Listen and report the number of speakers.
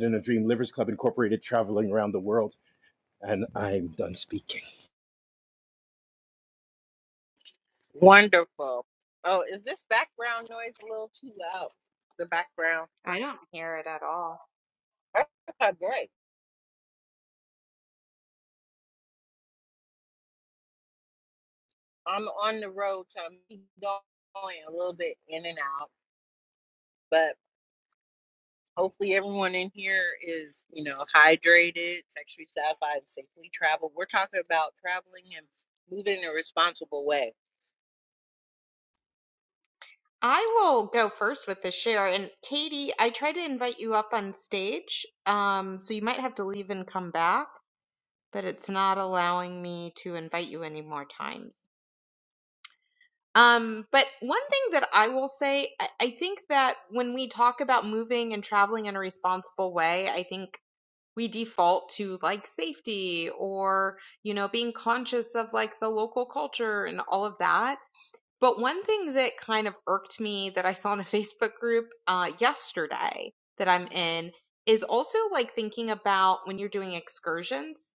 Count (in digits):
3